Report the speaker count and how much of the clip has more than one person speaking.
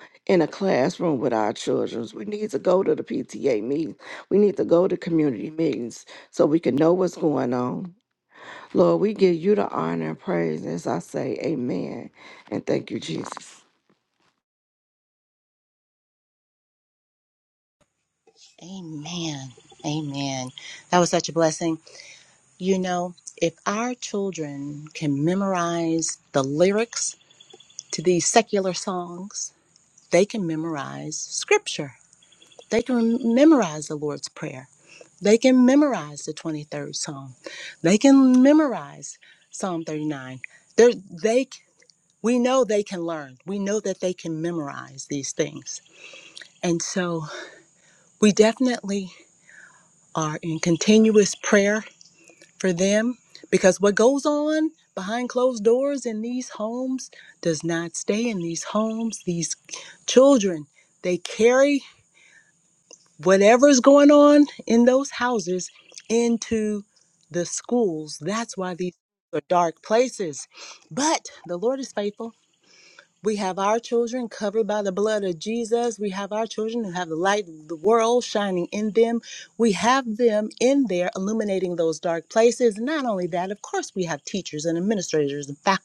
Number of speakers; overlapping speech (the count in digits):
2, no overlap